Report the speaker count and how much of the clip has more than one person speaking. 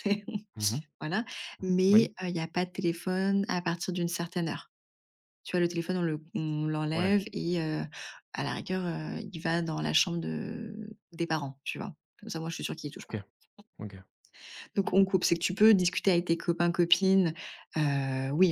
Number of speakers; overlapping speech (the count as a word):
two, about 3%